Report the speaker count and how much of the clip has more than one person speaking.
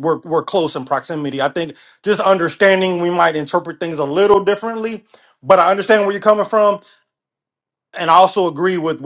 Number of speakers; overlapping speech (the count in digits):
1, no overlap